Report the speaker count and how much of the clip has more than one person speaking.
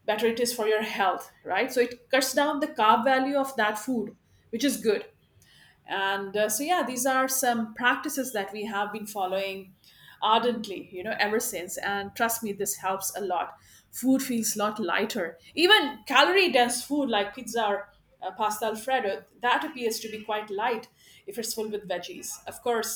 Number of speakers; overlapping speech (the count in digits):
1, no overlap